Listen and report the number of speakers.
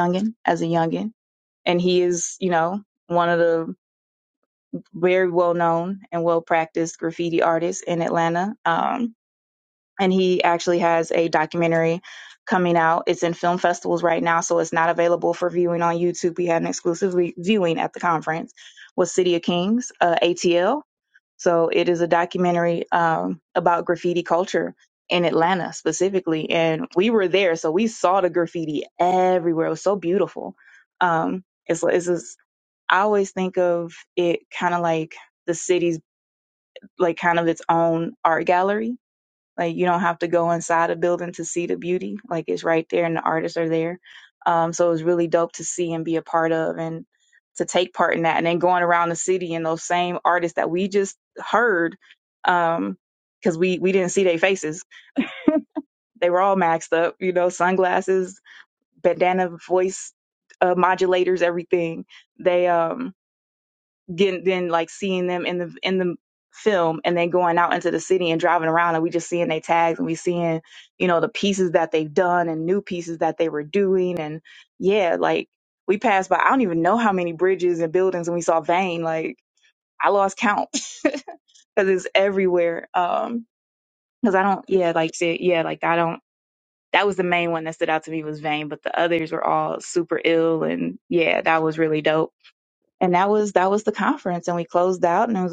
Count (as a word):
one